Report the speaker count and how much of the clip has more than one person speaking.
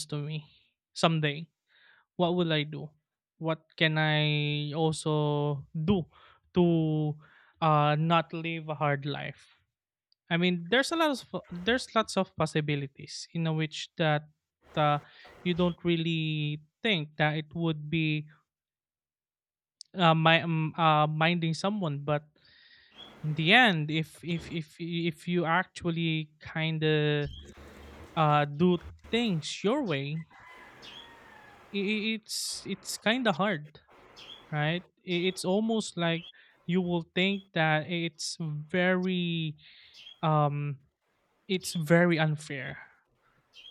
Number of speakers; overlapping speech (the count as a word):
one, no overlap